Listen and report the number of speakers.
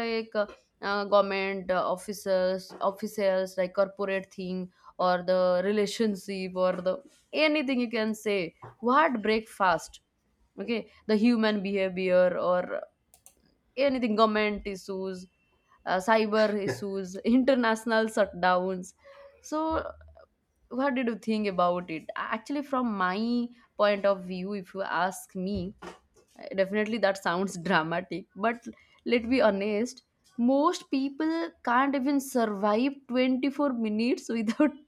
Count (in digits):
1